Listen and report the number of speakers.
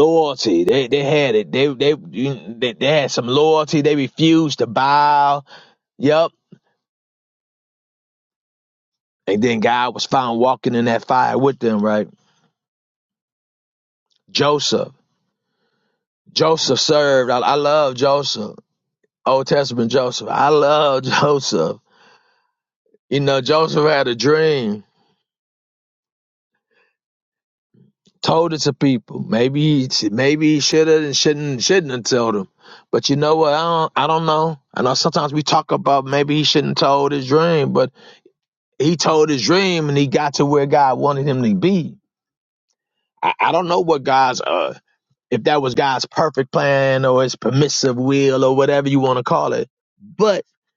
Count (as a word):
one